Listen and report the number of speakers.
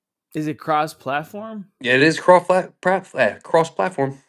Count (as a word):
two